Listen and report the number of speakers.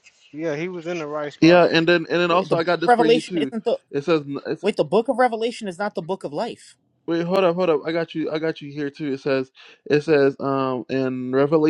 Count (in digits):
3